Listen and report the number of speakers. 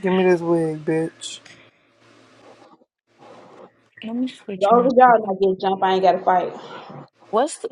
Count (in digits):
3